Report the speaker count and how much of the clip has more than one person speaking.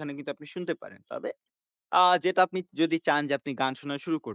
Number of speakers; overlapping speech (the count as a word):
one, no overlap